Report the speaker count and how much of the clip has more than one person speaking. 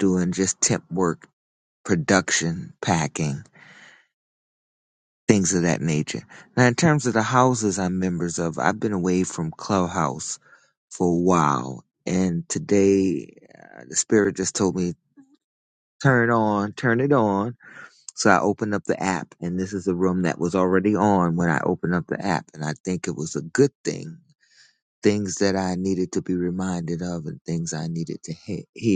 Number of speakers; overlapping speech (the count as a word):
one, no overlap